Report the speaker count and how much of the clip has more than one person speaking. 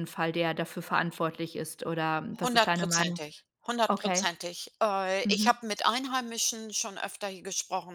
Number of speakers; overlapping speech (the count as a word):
two, about 18%